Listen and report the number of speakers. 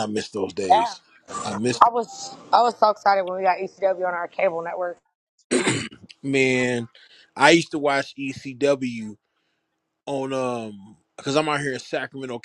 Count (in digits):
2